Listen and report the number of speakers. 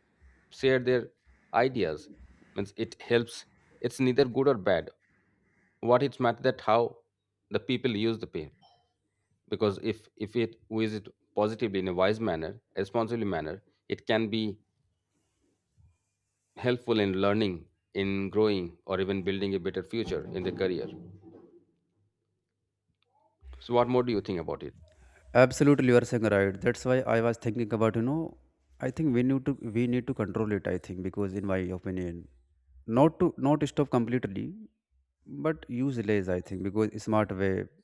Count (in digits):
2